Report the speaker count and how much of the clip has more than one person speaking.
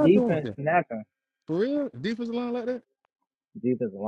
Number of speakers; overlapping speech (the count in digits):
2, about 13%